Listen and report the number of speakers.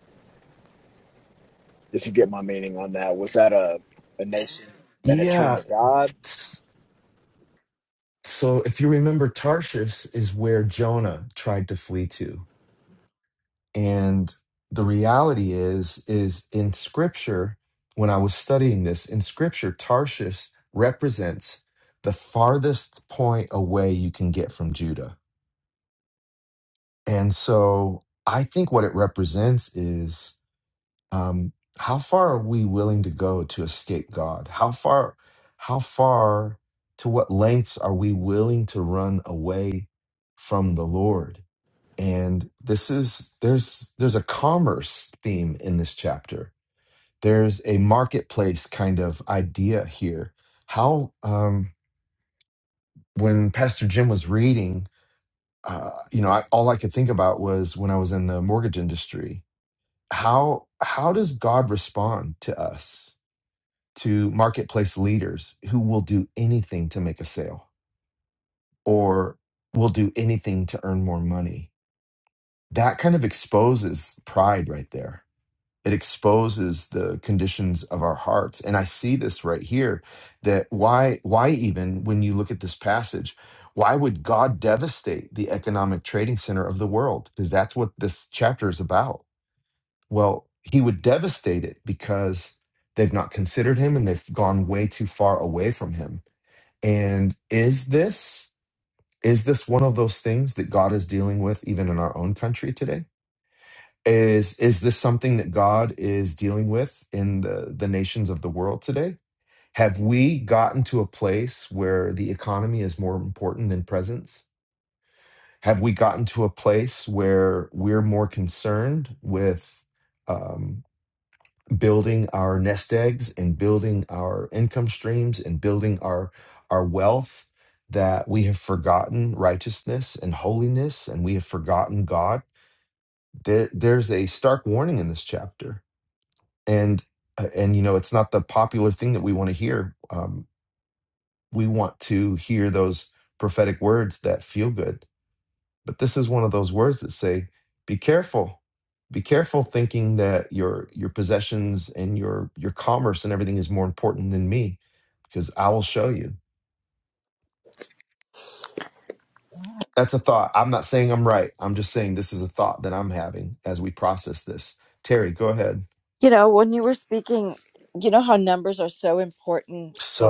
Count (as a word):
three